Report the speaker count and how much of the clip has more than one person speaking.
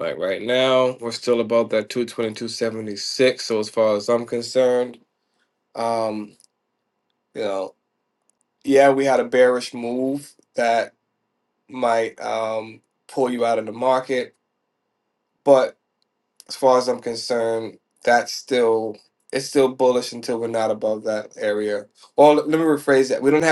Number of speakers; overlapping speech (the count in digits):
1, no overlap